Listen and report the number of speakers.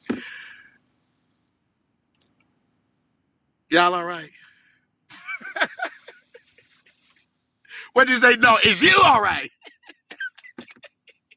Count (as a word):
one